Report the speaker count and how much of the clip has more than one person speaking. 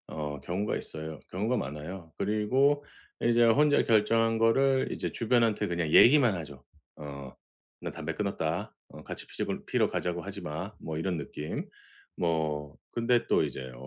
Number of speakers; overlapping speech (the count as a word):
one, no overlap